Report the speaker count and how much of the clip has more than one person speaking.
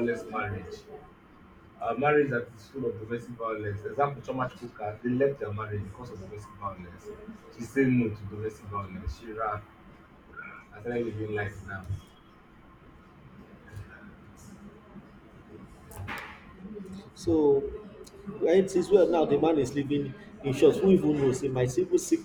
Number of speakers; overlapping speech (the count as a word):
two, no overlap